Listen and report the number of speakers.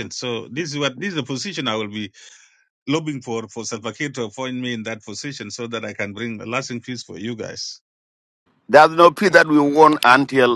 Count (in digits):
2